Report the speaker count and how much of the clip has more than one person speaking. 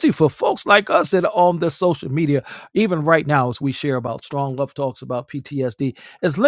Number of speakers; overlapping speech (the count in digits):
1, no overlap